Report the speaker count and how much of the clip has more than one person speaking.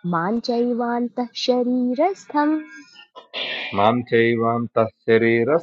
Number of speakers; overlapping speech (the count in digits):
2, no overlap